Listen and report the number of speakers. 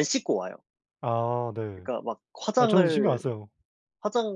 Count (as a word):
two